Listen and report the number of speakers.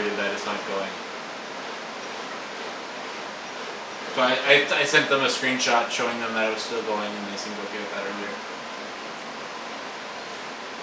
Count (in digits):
1